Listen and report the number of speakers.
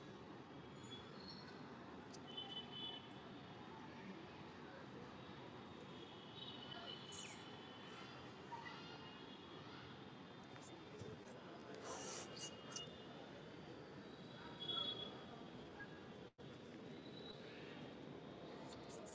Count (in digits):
0